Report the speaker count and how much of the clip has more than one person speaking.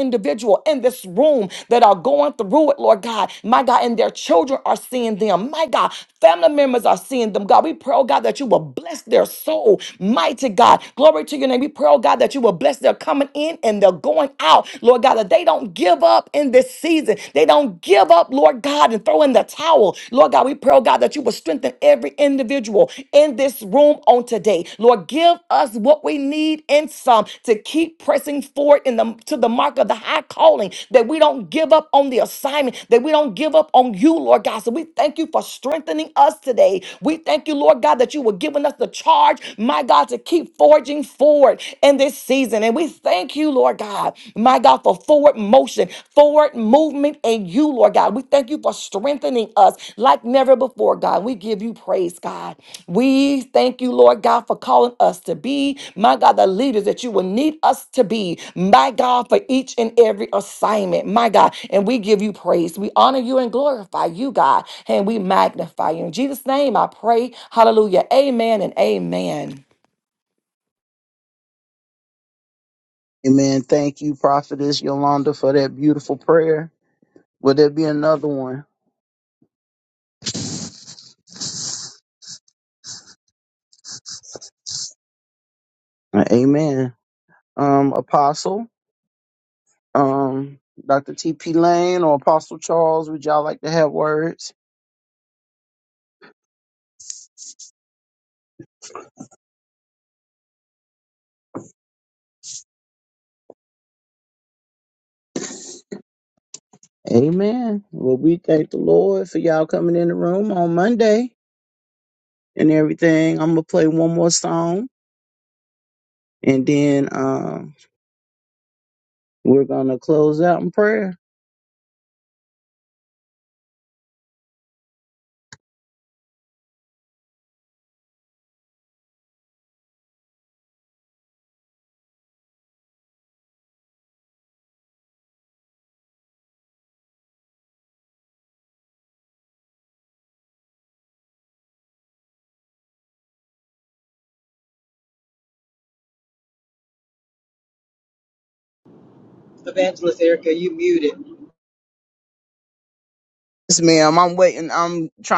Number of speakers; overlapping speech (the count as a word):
three, no overlap